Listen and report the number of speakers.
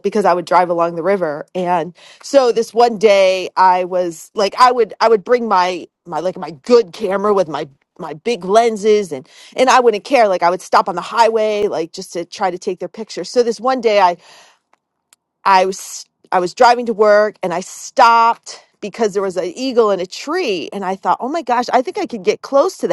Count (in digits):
1